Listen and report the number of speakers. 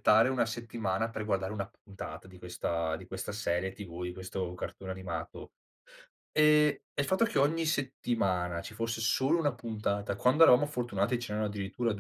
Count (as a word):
one